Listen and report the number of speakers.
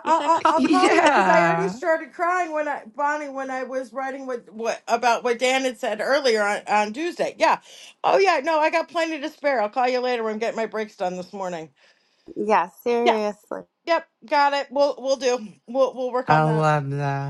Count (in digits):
3